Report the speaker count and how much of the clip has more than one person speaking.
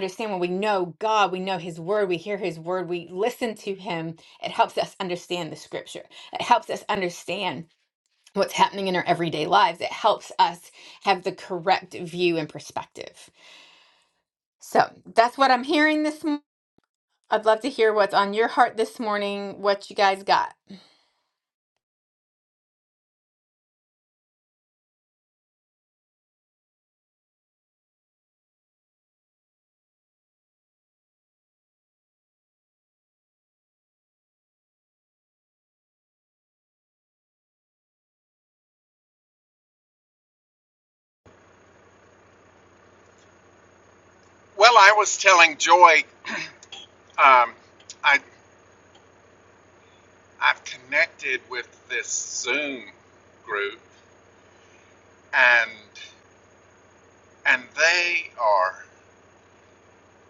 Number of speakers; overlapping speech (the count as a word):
two, no overlap